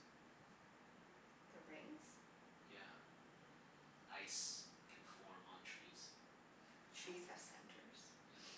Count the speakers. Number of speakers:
2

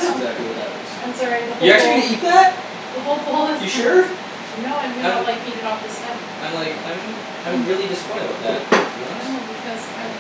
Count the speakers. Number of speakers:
2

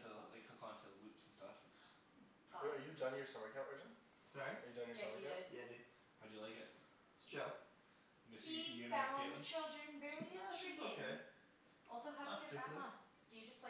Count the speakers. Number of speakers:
4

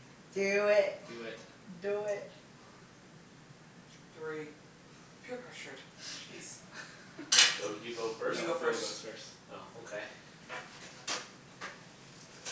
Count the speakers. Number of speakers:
4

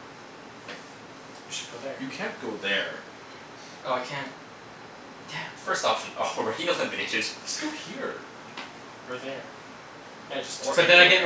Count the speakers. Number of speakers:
4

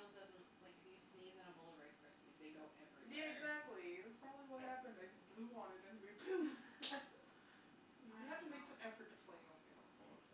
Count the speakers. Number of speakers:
2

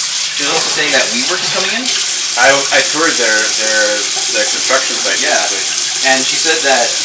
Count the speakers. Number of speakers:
2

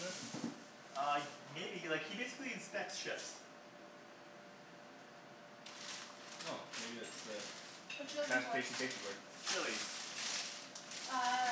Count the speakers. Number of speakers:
3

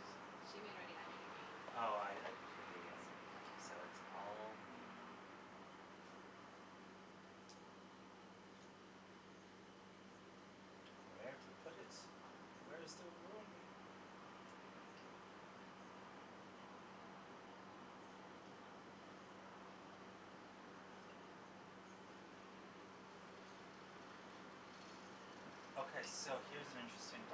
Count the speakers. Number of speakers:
2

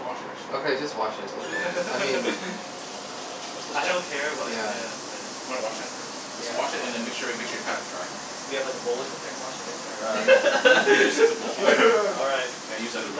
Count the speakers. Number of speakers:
4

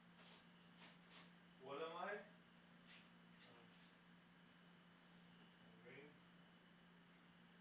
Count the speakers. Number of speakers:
1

